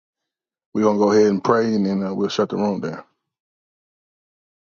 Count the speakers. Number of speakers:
1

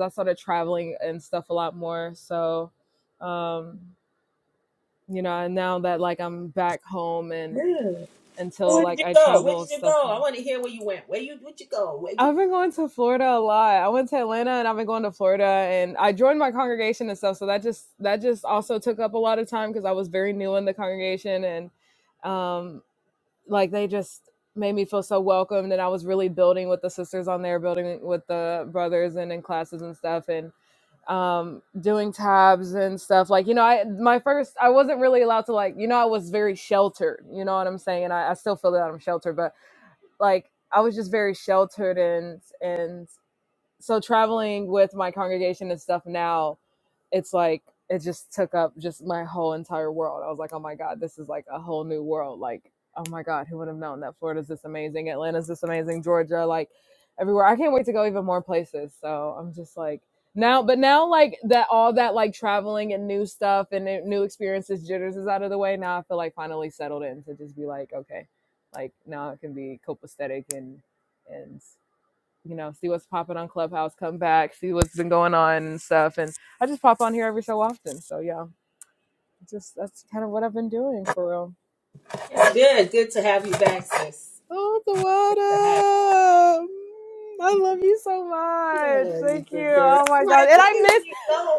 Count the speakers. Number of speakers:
2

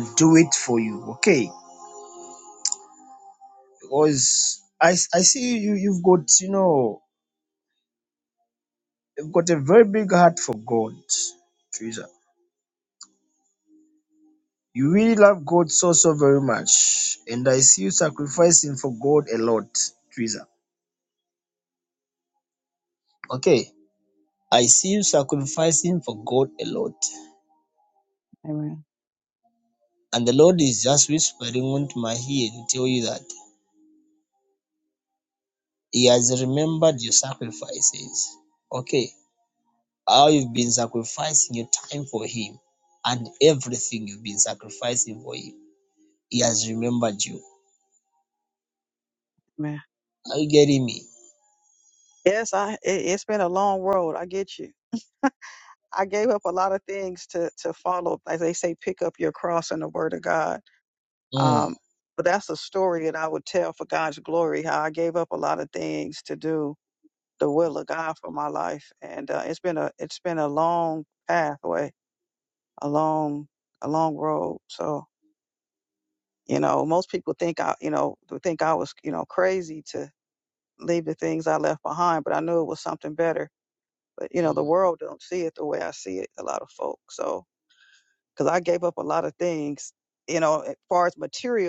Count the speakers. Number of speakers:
2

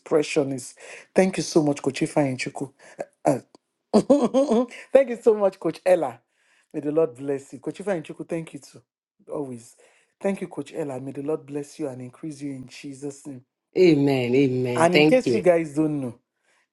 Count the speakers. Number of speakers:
2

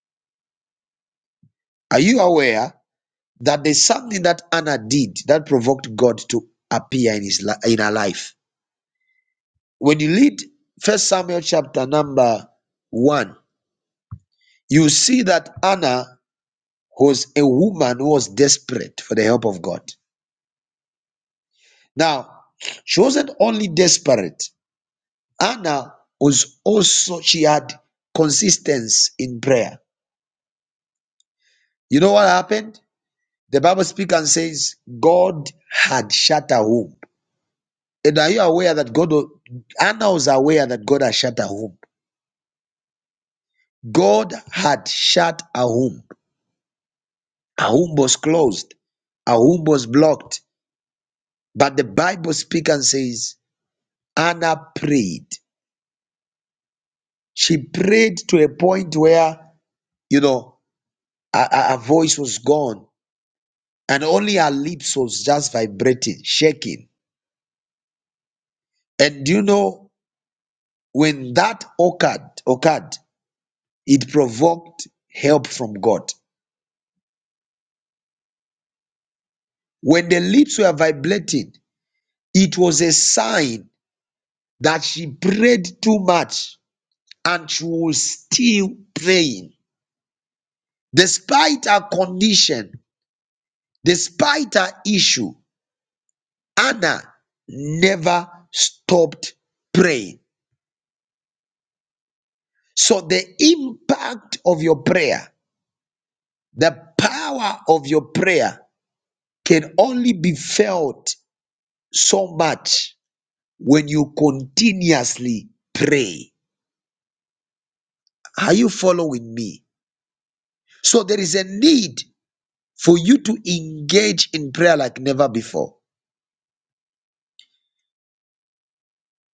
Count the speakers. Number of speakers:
1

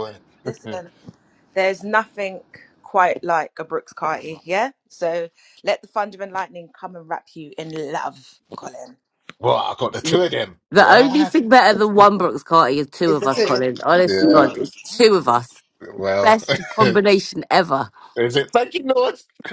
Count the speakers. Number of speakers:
3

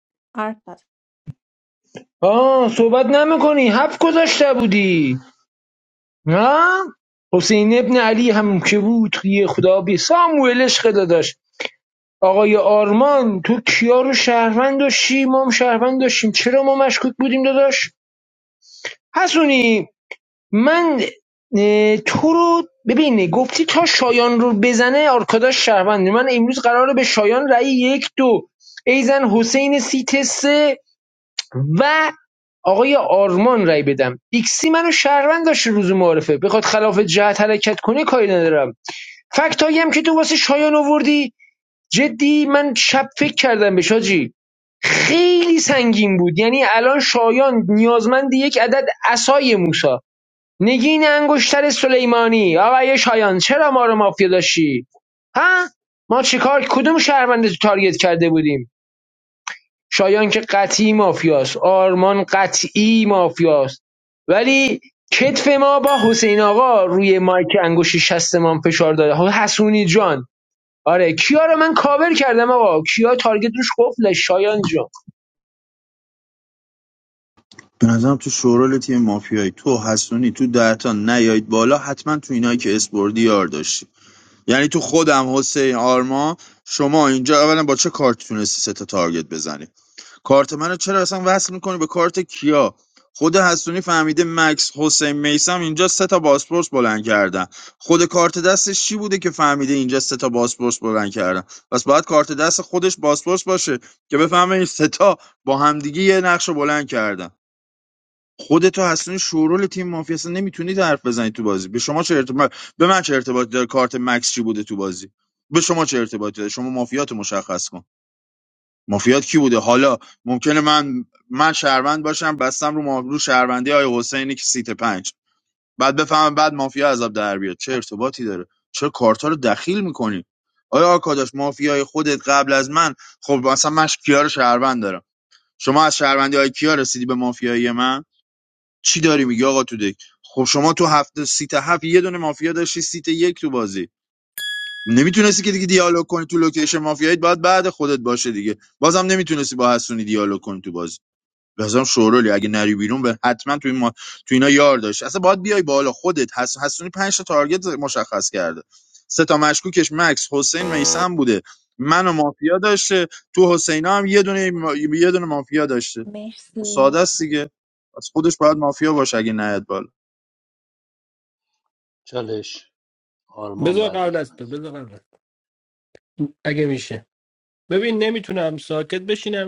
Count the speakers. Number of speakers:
5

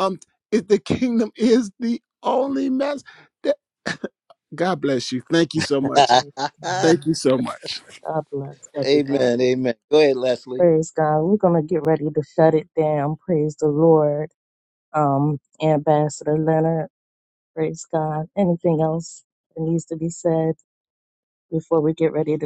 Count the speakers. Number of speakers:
3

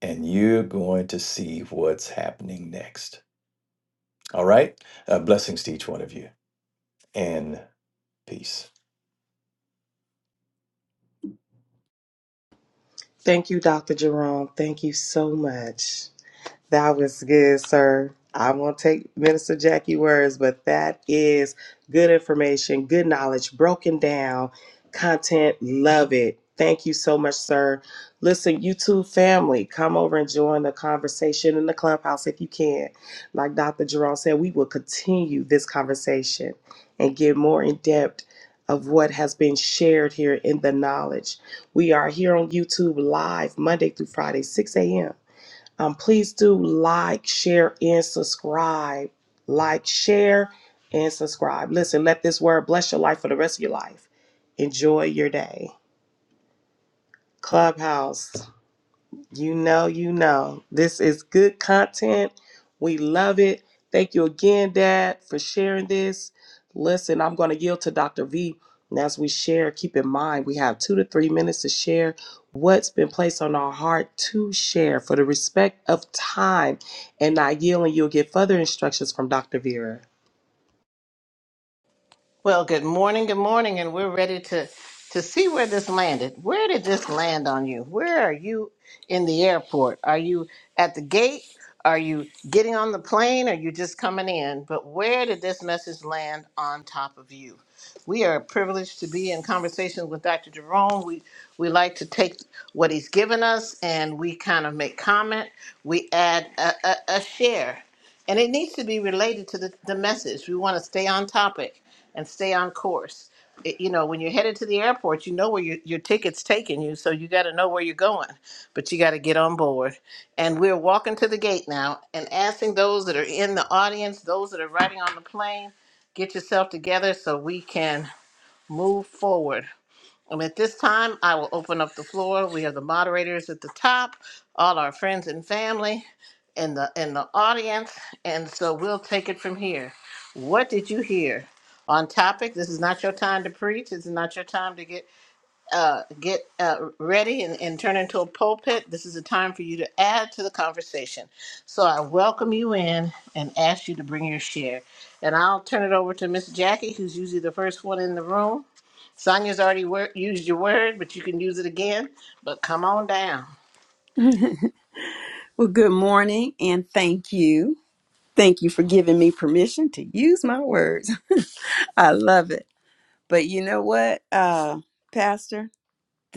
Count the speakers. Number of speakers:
4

